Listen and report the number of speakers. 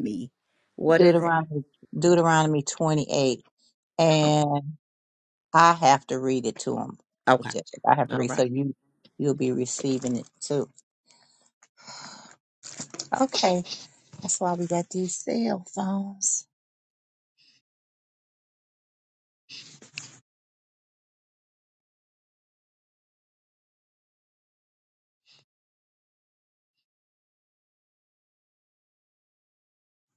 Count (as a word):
two